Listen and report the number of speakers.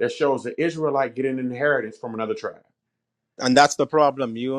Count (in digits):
2